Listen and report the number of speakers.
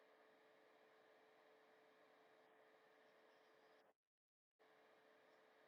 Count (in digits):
0